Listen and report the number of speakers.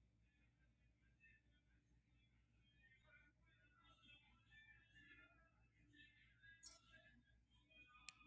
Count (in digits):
0